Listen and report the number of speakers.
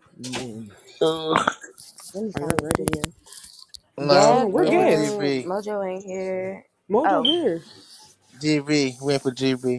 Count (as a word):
three